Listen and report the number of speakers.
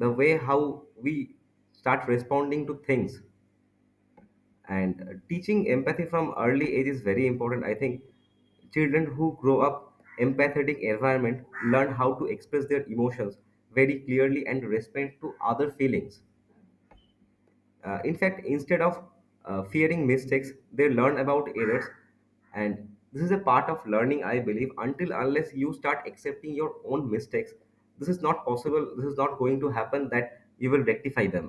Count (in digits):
1